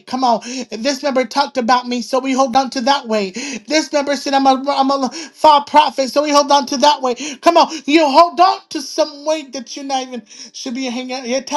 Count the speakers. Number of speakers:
one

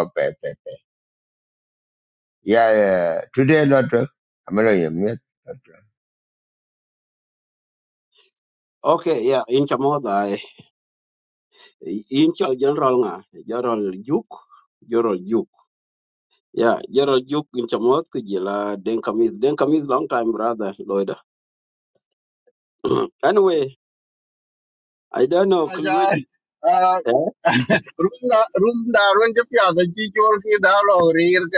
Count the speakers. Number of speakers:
three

